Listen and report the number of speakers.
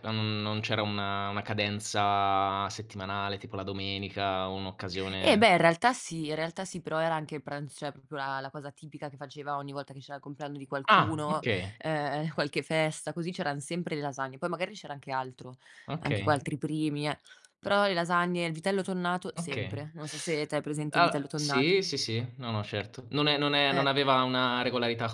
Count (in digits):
2